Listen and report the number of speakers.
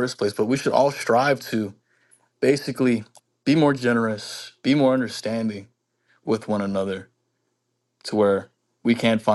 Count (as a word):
one